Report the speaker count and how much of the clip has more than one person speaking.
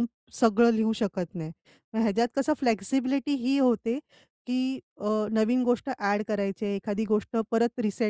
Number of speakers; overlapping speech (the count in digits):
1, no overlap